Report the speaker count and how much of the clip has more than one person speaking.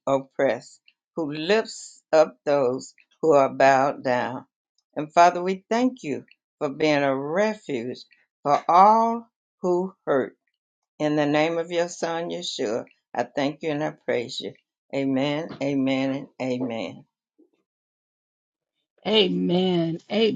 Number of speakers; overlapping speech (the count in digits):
2, no overlap